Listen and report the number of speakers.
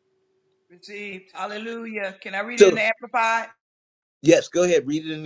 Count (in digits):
2